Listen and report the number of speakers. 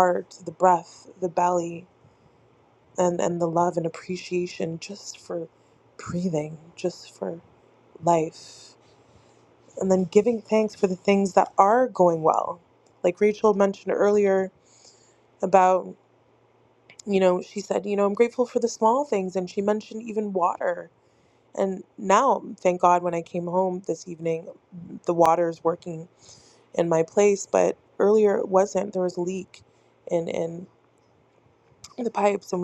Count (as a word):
one